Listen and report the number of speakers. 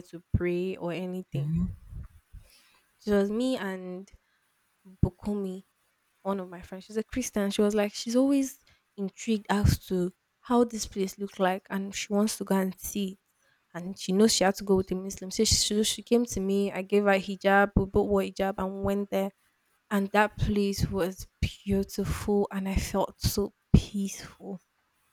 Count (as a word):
one